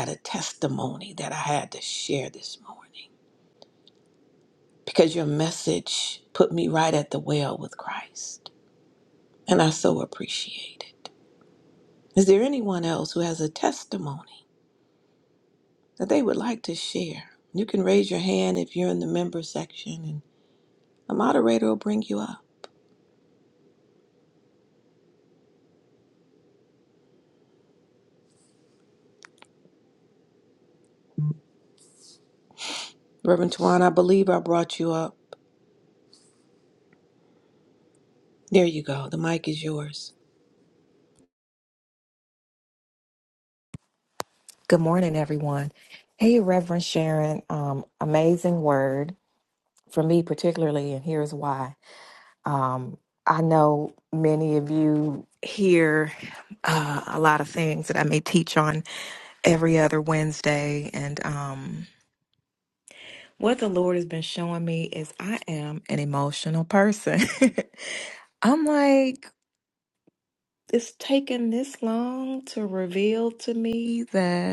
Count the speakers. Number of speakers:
2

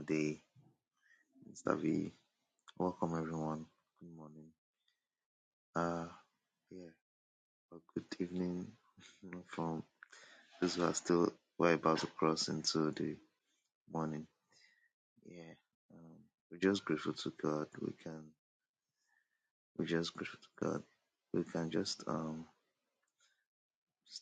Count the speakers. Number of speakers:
1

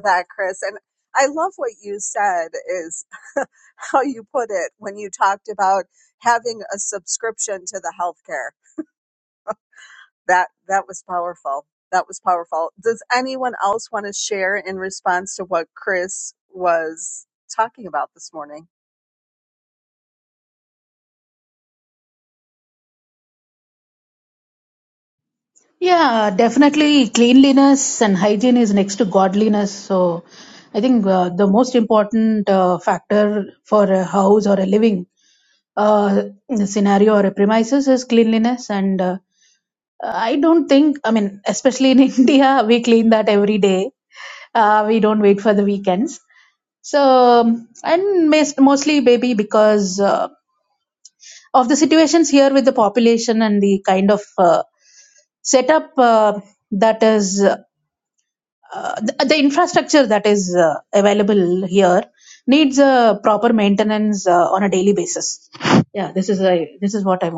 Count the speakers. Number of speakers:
2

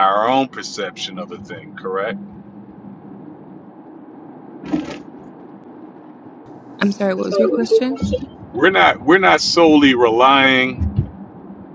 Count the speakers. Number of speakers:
2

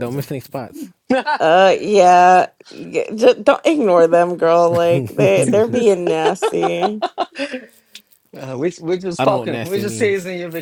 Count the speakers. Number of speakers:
3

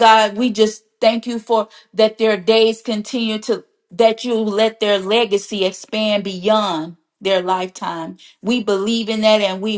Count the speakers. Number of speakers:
1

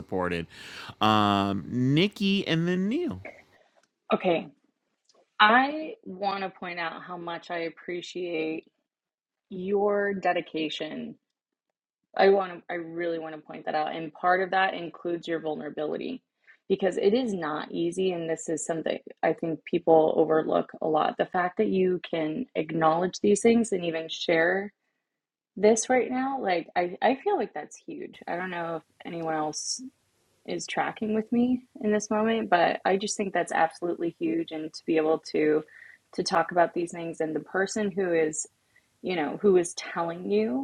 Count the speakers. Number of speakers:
2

